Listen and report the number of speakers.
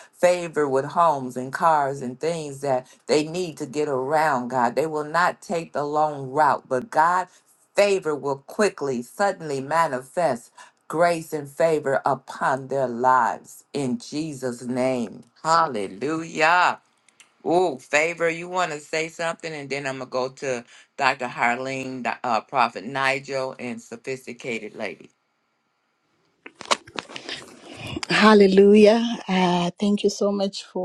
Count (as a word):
two